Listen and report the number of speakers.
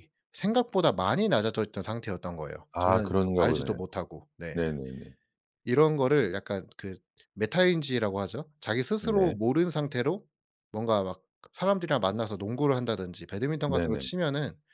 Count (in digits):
2